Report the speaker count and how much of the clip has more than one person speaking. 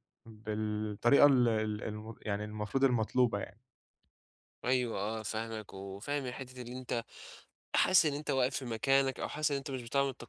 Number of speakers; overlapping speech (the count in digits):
2, no overlap